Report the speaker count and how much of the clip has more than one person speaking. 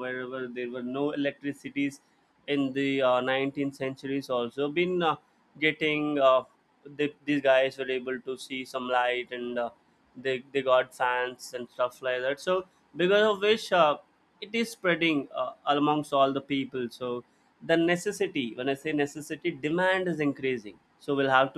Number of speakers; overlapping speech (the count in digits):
1, no overlap